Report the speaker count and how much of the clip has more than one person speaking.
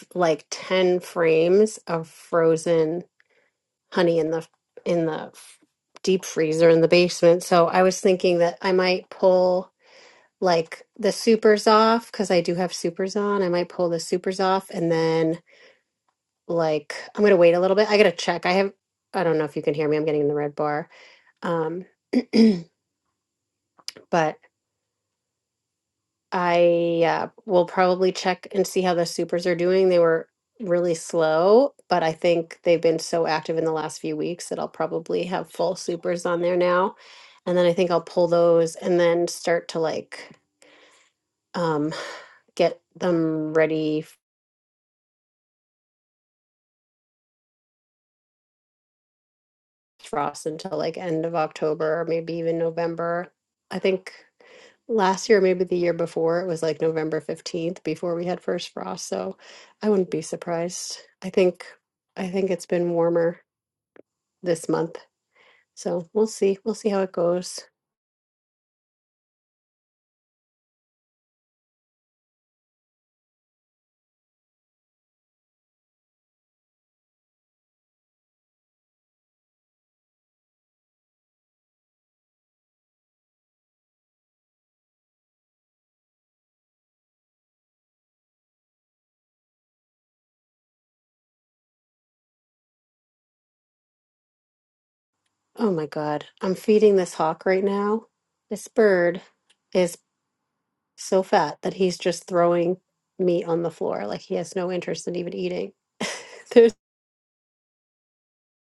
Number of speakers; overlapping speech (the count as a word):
one, no overlap